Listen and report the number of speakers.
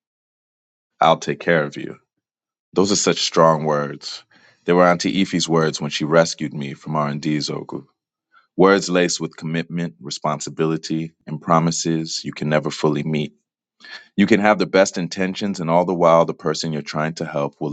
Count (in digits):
1